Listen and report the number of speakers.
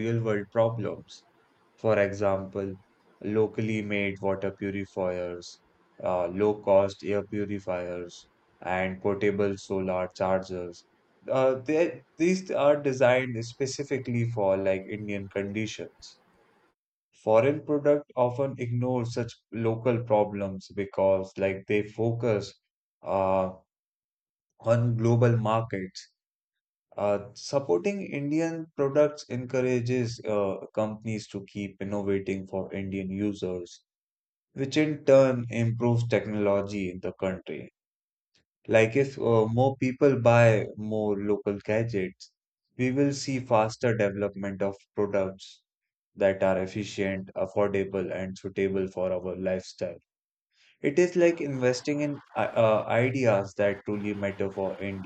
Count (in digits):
1